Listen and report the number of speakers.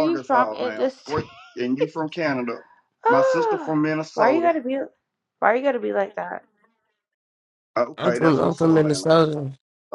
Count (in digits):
3